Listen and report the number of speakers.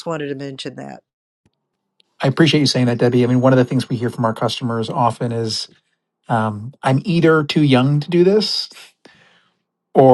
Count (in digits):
2